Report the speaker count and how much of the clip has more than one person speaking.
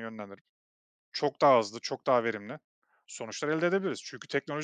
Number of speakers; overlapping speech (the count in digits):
1, no overlap